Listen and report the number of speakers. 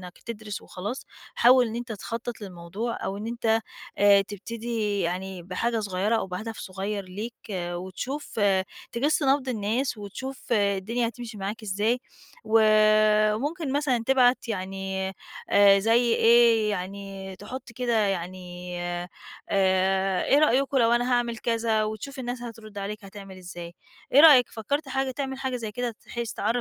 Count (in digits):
1